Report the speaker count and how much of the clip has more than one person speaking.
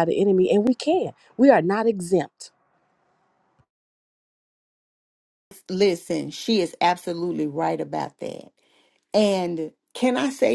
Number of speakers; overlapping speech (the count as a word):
two, no overlap